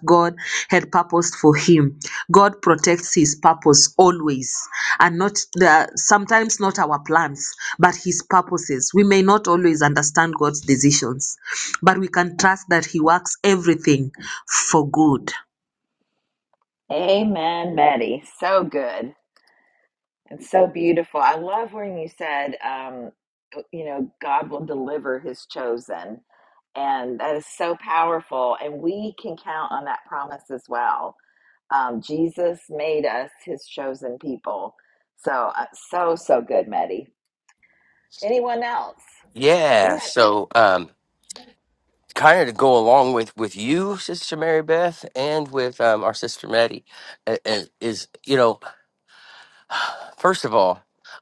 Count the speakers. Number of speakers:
three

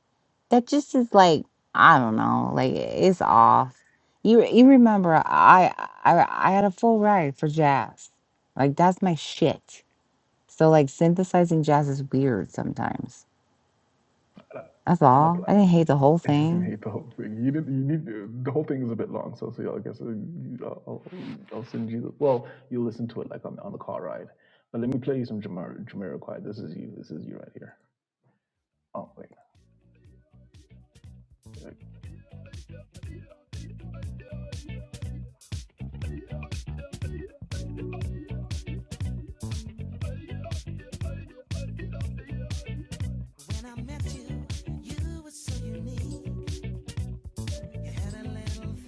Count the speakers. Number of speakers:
two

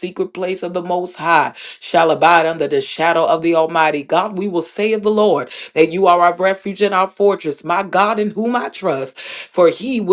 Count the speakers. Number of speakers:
one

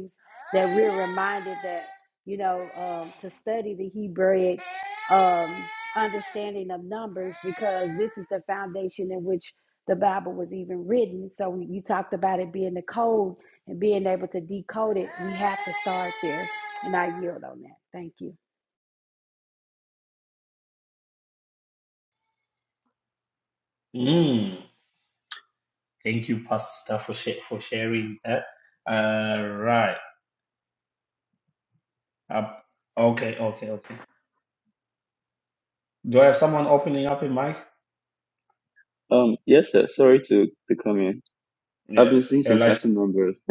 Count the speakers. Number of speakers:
three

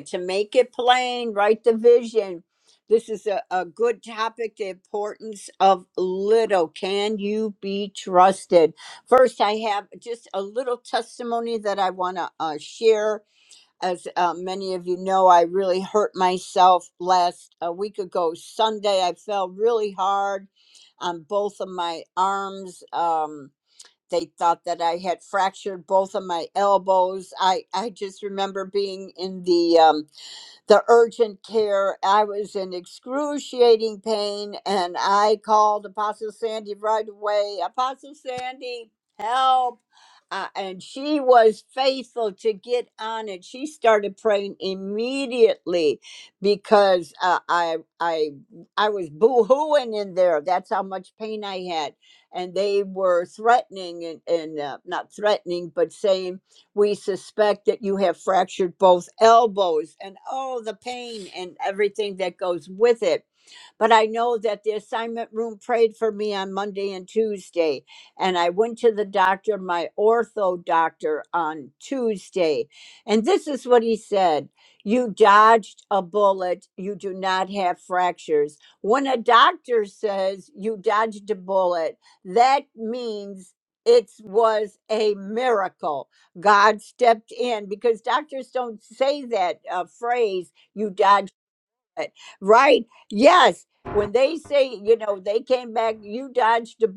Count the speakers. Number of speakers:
one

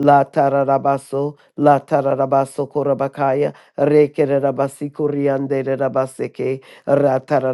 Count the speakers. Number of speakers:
one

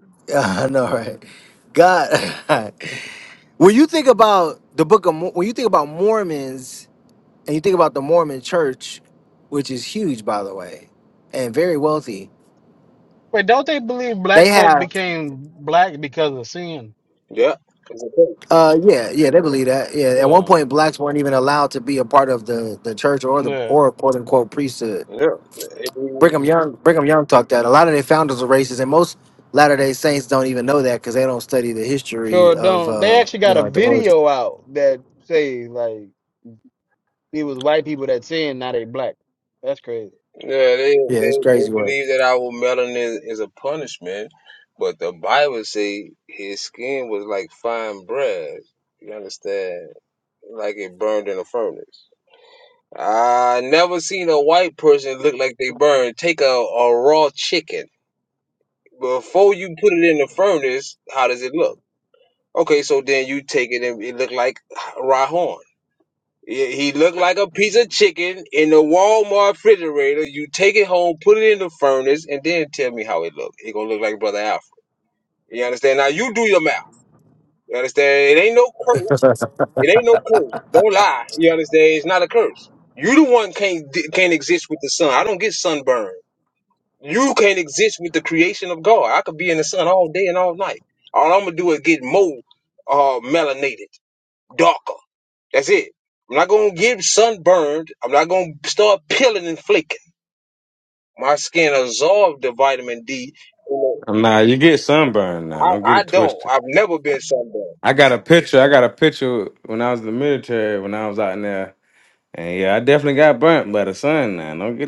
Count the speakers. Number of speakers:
four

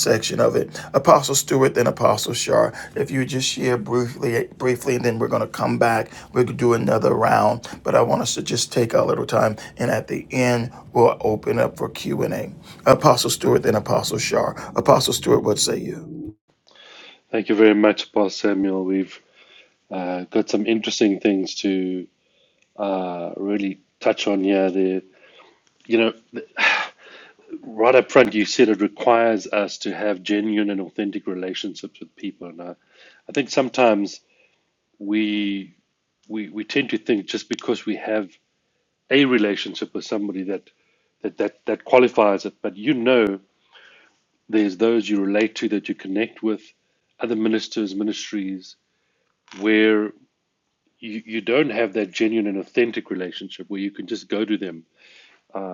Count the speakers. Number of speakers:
two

